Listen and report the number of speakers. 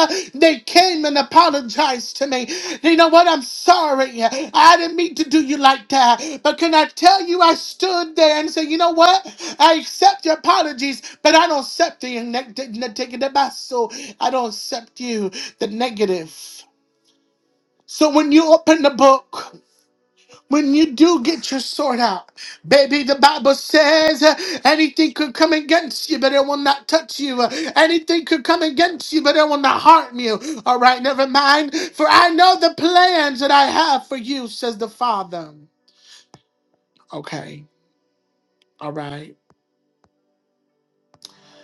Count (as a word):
one